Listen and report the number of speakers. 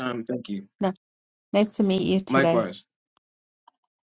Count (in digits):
2